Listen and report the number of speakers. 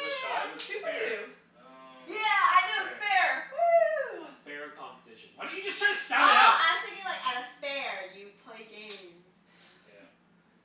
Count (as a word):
four